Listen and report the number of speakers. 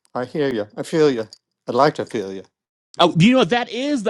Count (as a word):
two